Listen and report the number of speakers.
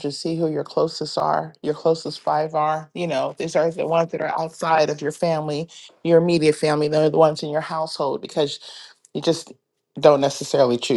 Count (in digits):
1